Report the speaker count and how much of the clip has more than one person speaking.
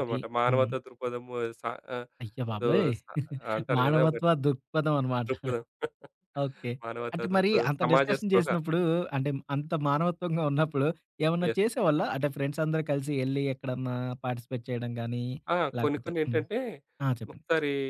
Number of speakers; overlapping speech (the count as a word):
two, about 21%